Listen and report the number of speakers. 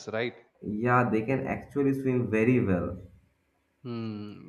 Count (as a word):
two